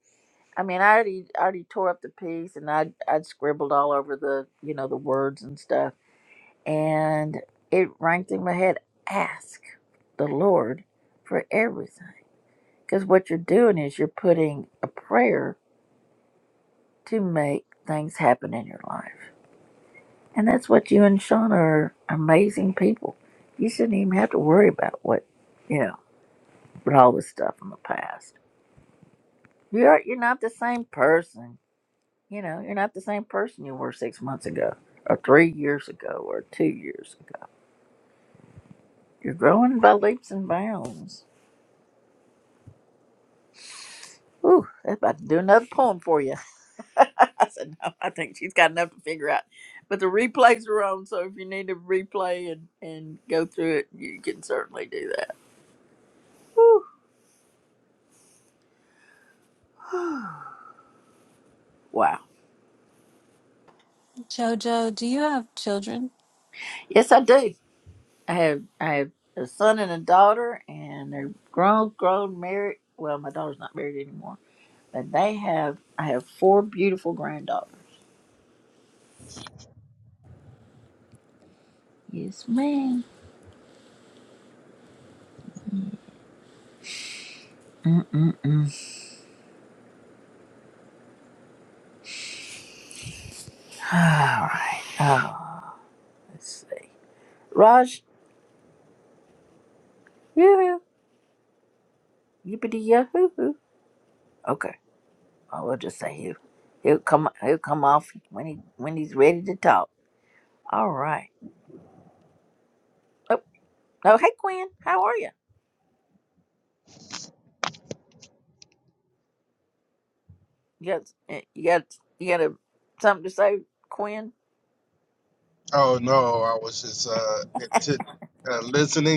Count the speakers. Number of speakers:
3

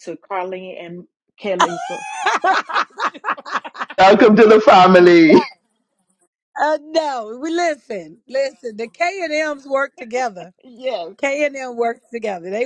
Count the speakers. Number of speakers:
3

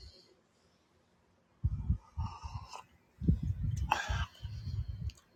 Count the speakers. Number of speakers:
0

